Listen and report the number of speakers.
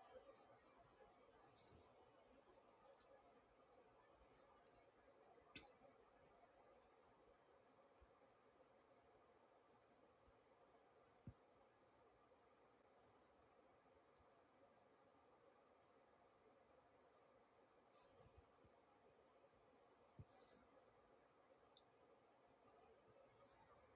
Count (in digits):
0